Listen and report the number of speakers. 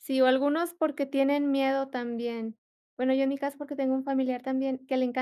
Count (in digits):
1